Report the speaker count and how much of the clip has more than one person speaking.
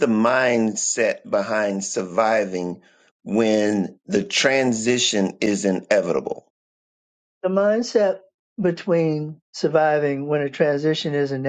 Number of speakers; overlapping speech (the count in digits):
2, no overlap